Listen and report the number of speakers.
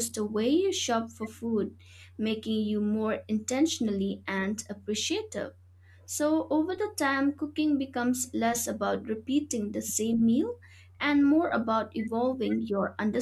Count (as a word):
one